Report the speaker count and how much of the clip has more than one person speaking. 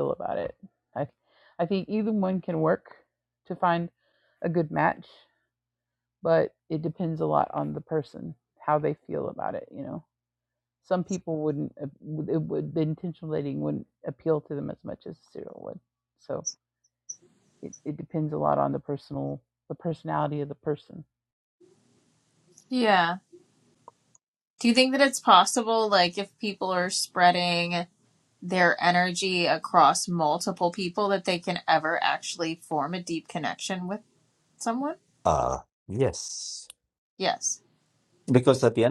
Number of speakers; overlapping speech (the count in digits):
3, no overlap